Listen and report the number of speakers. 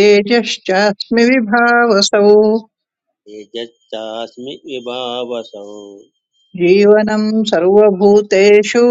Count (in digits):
2